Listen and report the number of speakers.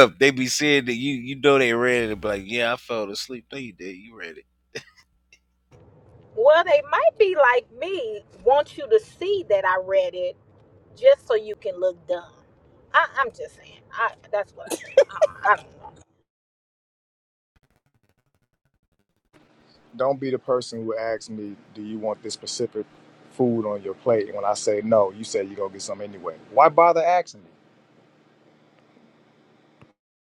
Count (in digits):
3